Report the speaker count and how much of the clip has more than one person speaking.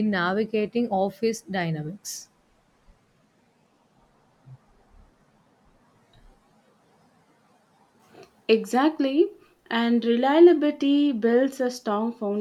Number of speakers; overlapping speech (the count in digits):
2, no overlap